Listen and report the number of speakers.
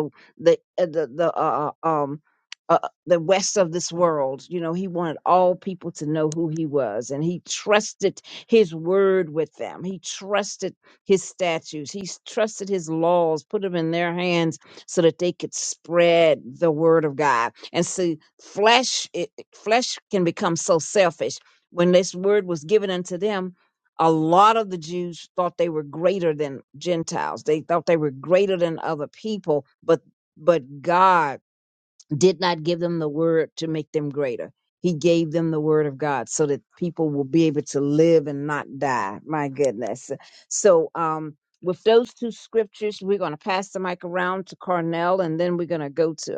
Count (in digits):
1